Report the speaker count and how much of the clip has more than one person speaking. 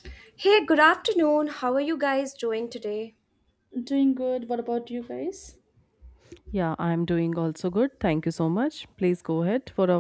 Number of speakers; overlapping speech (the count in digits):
3, no overlap